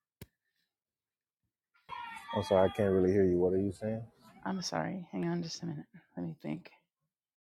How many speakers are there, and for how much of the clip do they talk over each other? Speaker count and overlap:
two, no overlap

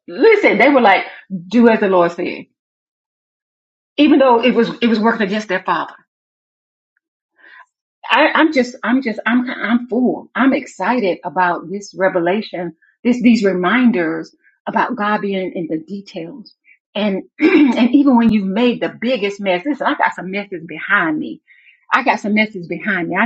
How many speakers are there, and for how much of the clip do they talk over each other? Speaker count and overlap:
one, no overlap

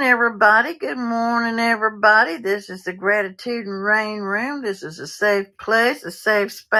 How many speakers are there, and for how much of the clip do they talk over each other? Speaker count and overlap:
one, no overlap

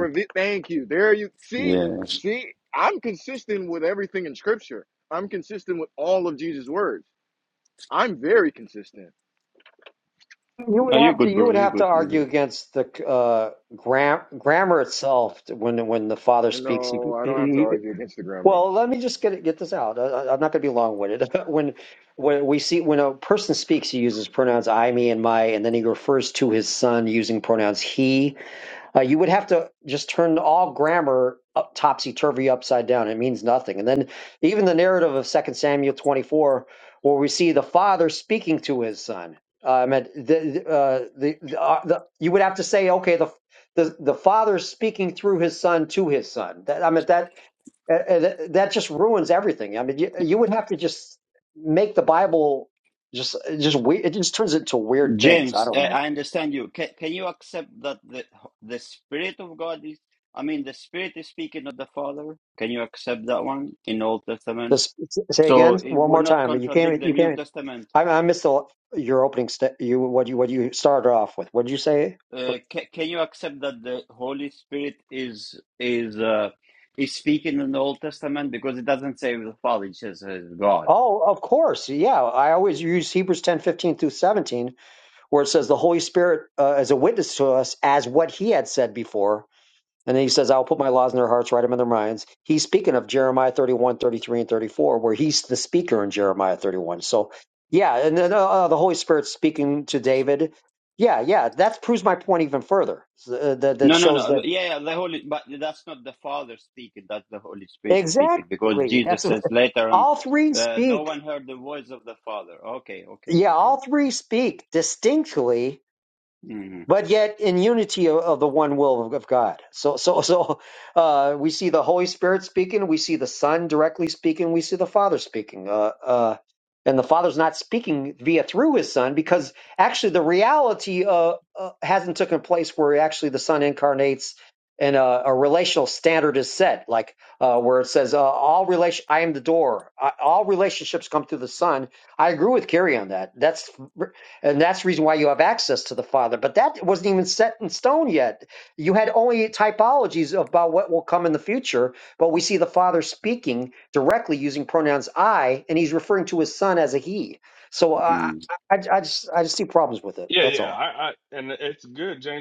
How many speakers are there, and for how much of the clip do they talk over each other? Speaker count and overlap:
four, about 6%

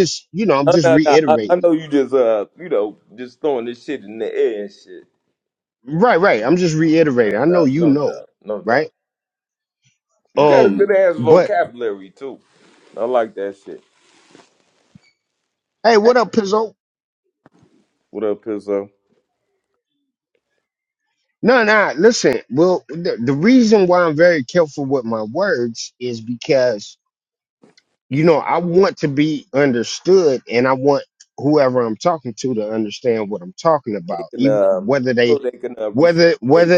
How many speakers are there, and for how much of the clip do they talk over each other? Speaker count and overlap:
two, about 12%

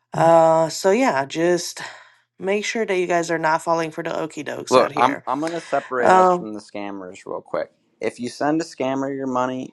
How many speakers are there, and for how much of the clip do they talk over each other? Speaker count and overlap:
two, about 9%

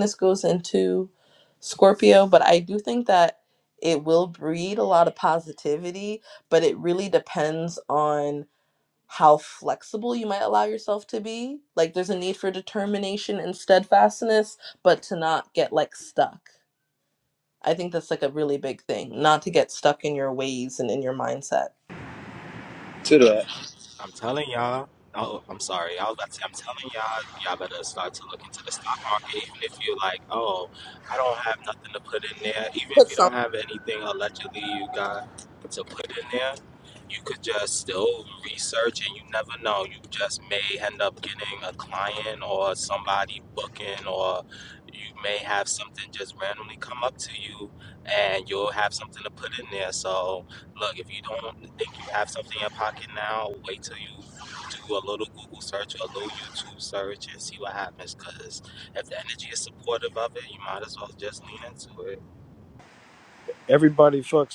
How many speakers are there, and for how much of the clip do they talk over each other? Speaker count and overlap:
three, about 1%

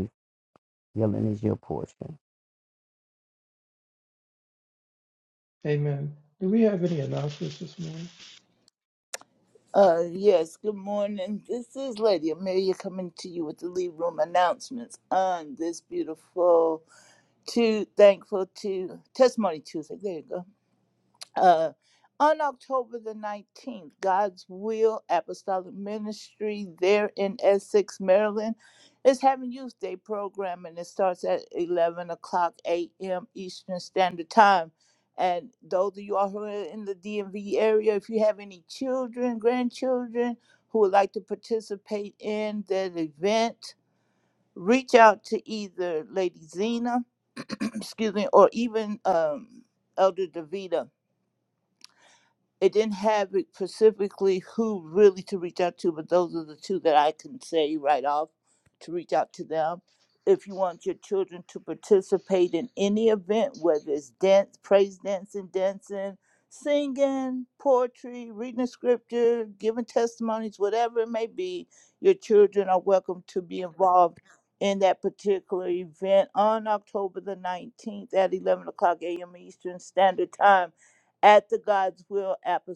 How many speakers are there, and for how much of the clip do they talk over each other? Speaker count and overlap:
three, no overlap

